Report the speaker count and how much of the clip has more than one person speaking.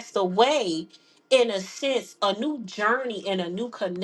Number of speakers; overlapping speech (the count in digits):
1, no overlap